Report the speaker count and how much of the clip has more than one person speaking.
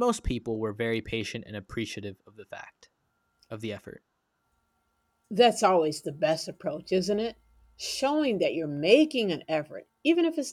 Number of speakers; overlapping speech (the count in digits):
2, no overlap